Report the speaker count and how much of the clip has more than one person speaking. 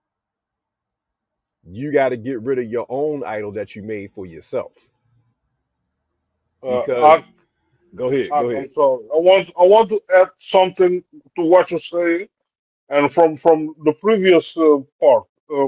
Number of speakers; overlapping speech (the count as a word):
two, about 5%